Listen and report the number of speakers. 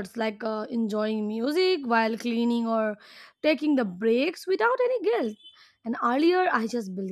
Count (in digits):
1